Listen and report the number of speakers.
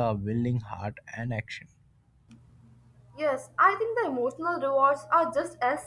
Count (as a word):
two